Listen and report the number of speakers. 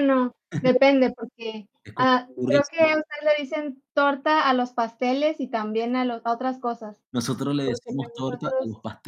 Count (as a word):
two